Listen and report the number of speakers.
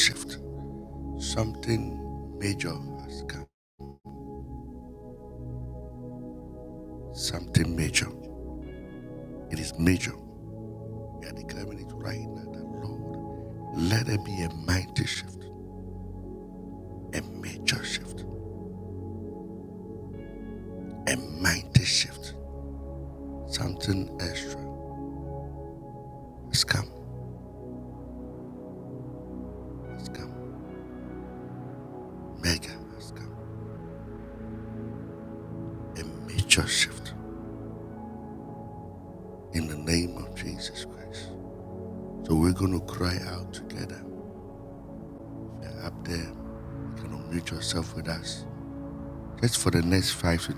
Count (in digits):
1